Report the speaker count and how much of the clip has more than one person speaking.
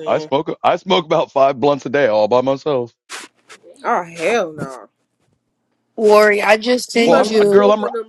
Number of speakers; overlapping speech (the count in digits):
3, about 16%